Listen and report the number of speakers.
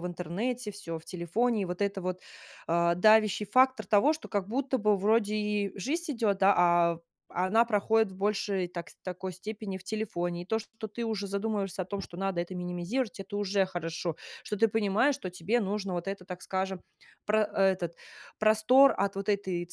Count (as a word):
one